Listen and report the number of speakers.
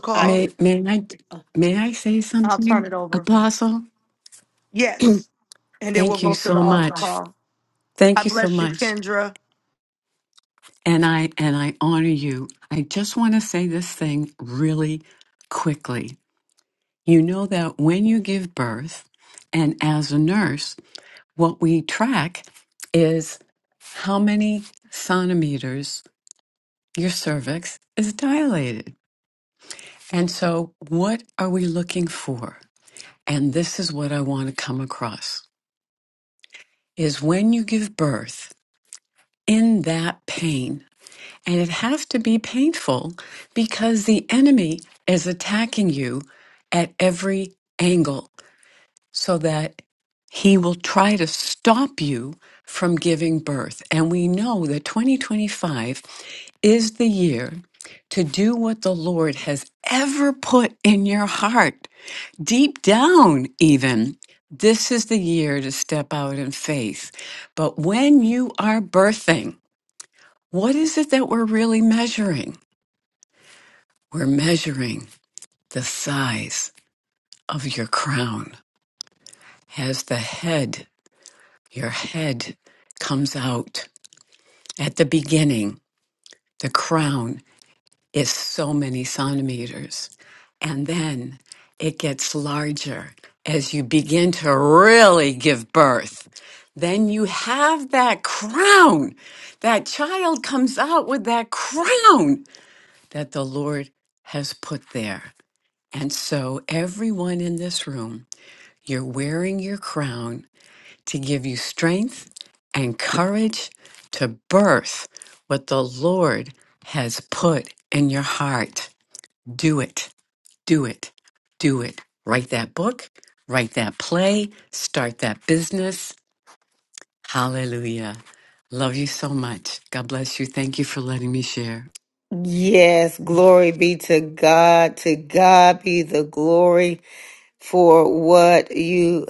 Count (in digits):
3